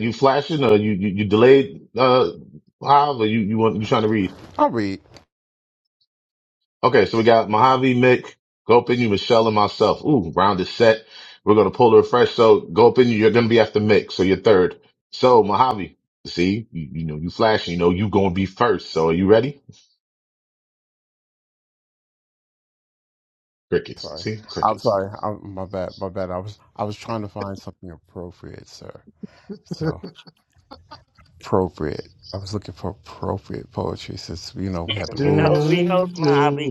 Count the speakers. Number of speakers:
three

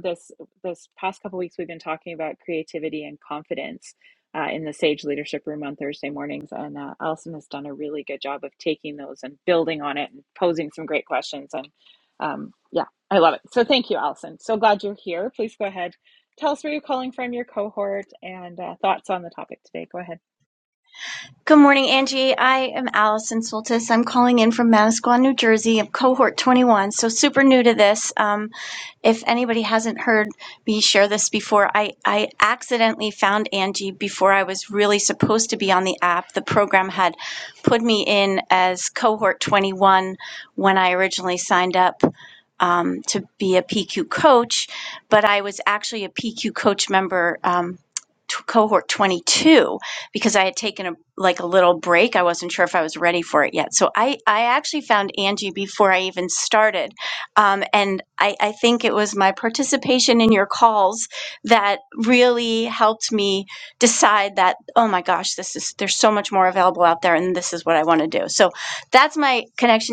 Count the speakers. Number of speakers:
two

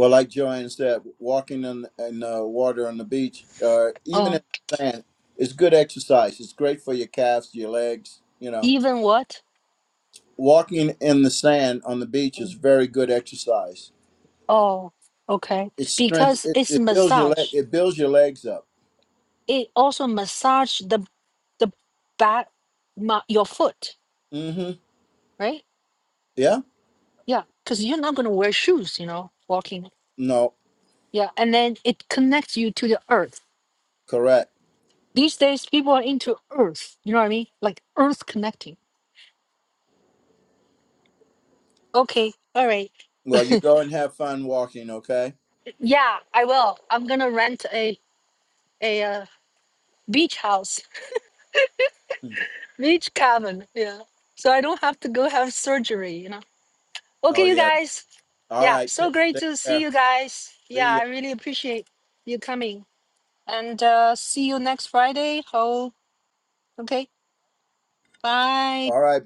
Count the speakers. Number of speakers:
two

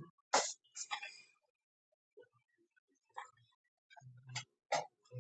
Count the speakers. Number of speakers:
zero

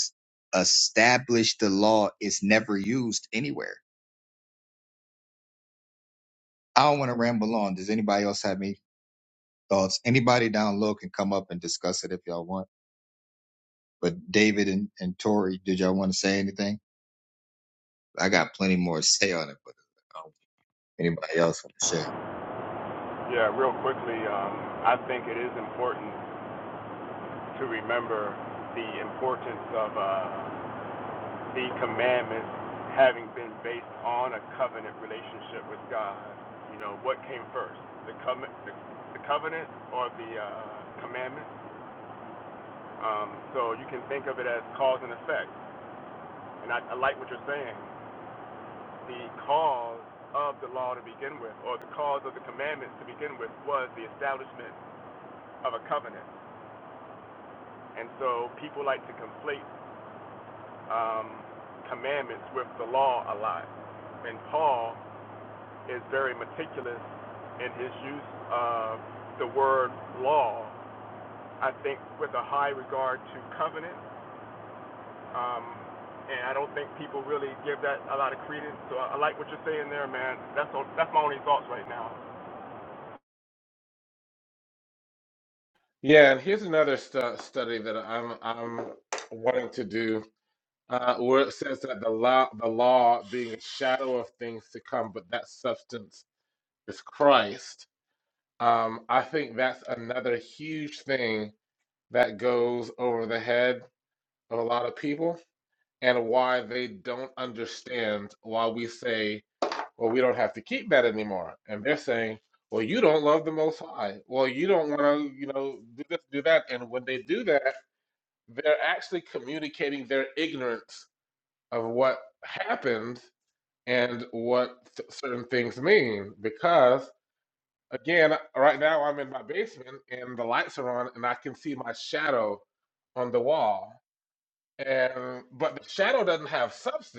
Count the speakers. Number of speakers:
three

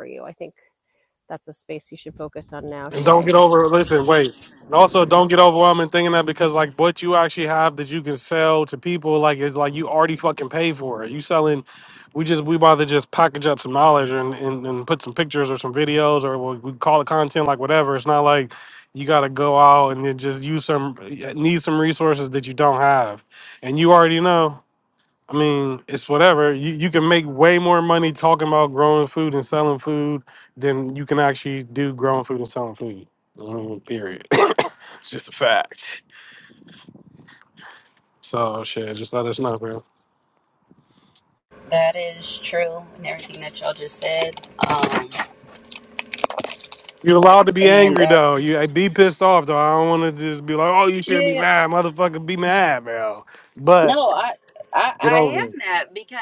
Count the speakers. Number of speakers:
three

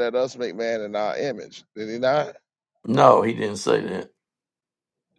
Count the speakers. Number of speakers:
two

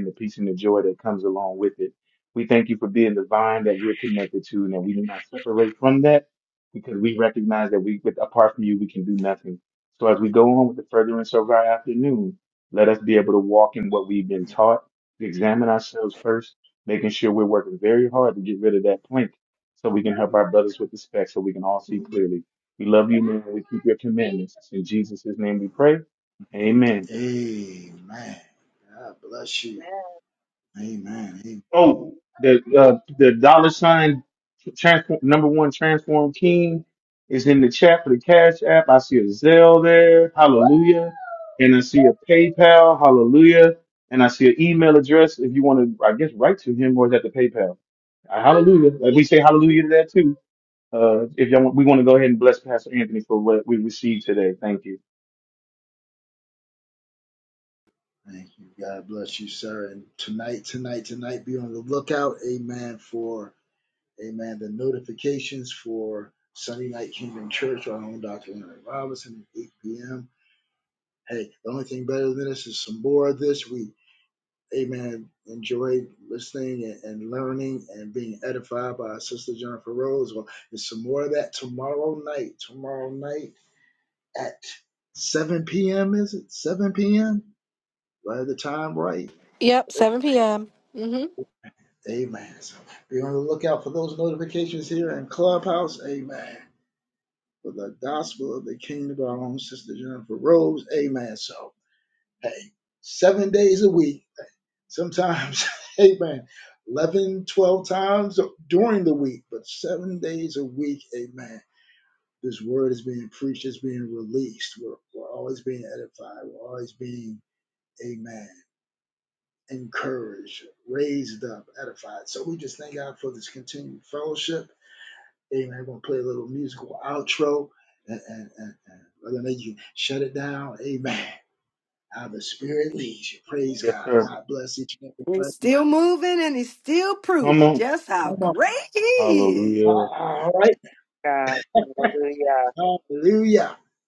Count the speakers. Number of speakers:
five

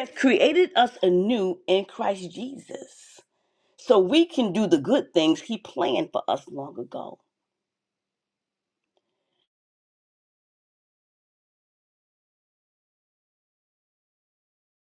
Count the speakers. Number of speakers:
one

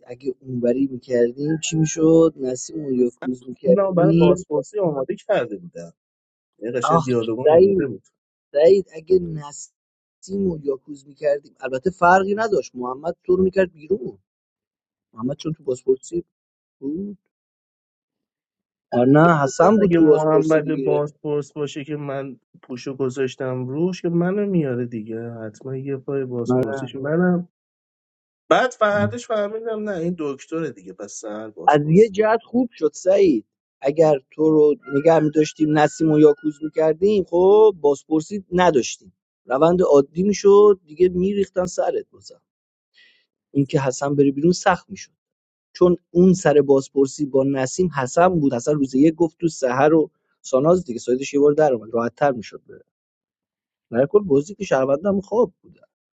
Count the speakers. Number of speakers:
two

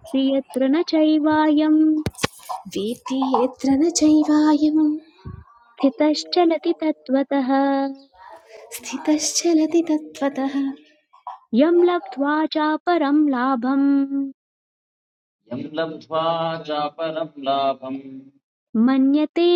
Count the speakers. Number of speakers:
three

